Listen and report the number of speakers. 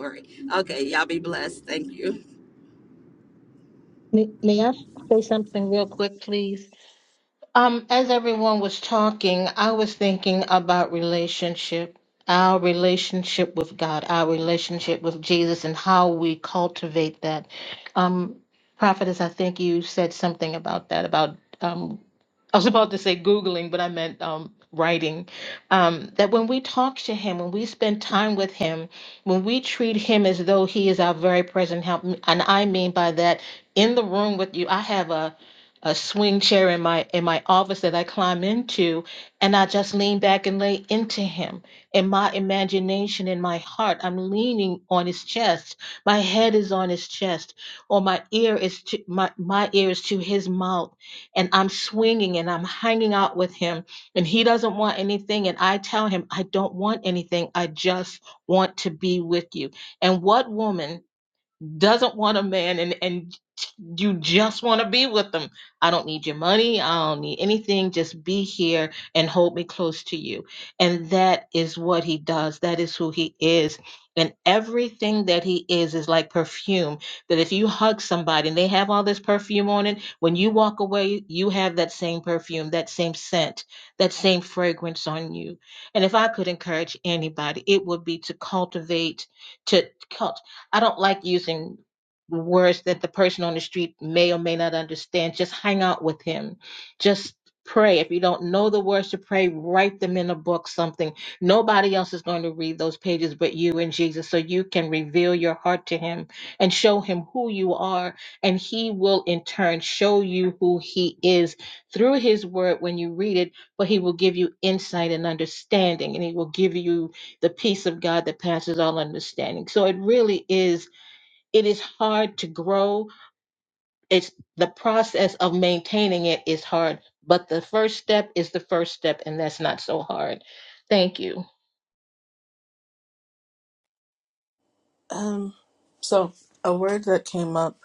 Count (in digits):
3